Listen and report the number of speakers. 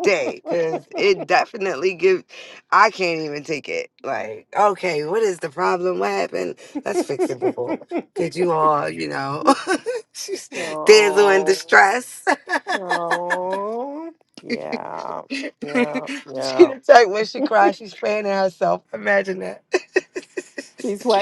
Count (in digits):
2